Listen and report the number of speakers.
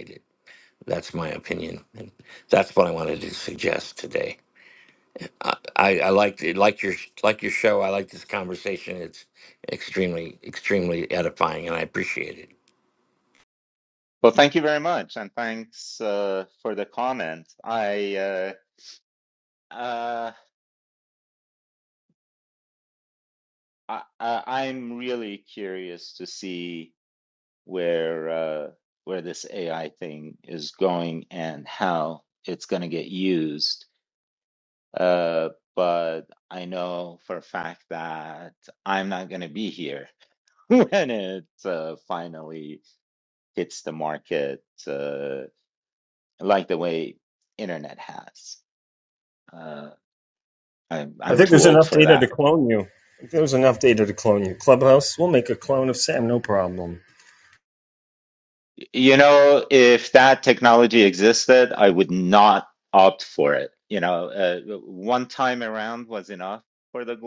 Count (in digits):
3